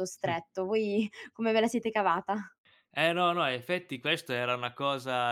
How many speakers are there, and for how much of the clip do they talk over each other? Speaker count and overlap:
2, about 2%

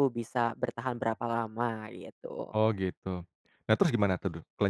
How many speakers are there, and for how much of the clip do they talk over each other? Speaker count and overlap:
2, no overlap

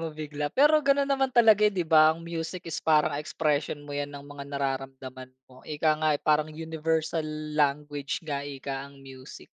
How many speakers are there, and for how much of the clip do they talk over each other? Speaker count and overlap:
1, no overlap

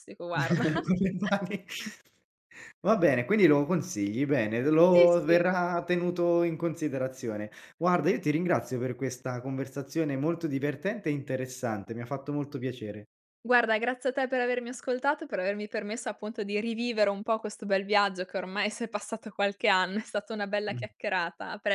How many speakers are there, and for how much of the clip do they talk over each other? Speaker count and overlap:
2, about 3%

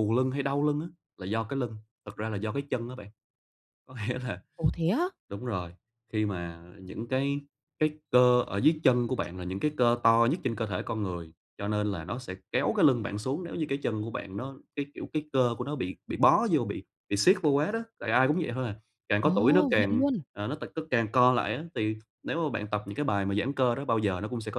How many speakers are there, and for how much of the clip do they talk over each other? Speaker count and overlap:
2, about 3%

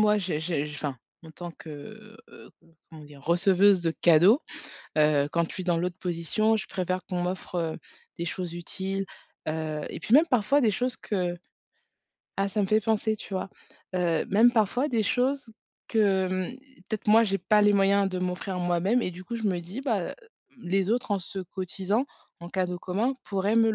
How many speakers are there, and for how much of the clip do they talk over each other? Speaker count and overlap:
1, no overlap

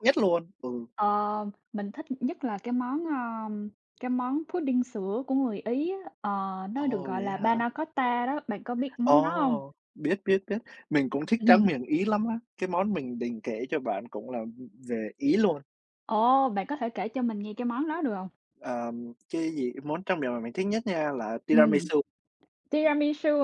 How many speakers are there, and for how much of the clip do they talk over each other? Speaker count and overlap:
2, about 9%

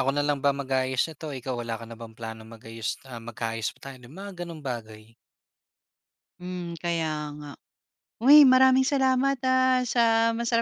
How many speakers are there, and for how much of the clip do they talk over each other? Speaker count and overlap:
2, no overlap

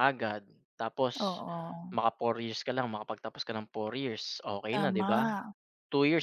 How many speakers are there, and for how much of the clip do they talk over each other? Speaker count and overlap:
2, about 11%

